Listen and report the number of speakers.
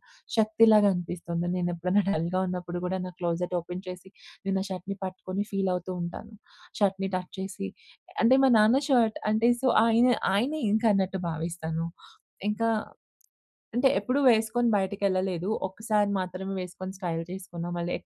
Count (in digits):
1